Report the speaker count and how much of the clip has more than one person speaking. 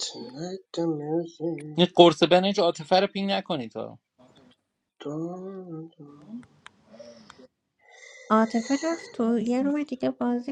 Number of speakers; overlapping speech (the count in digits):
3, no overlap